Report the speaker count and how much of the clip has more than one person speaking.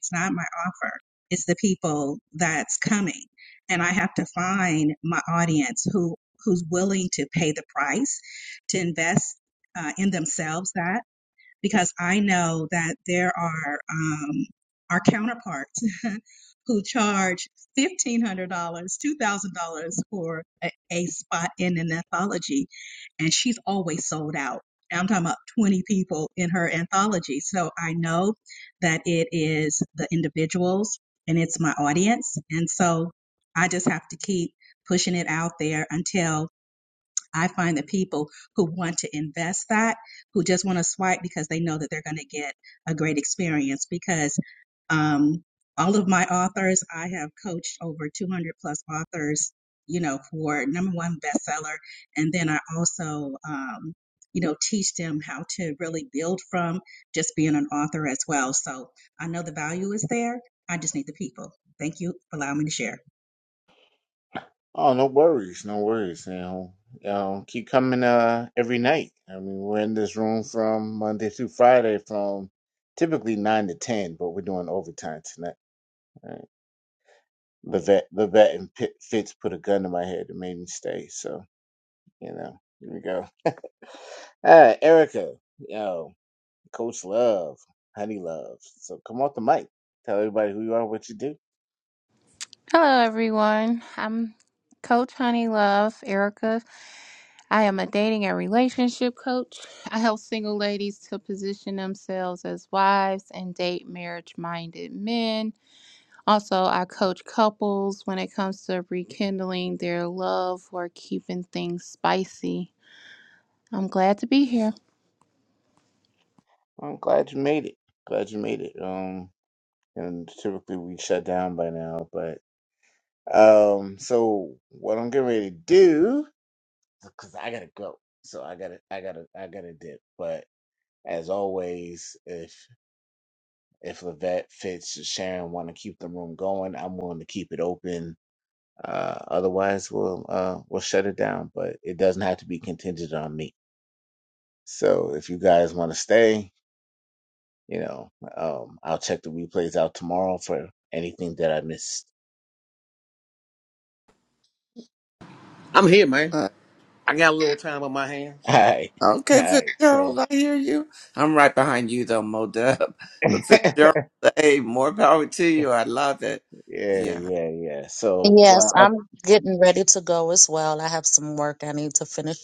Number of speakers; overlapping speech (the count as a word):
six, about 1%